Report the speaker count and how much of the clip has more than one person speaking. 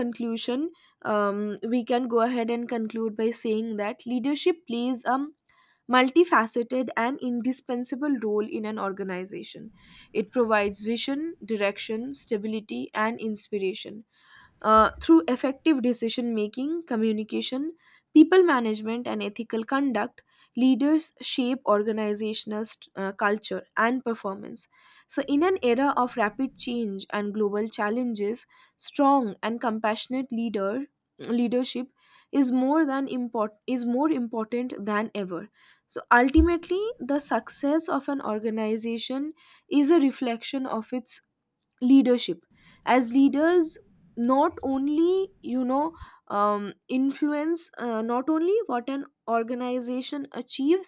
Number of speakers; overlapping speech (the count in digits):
1, no overlap